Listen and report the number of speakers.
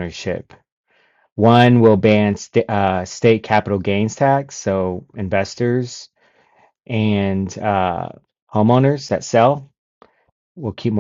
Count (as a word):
one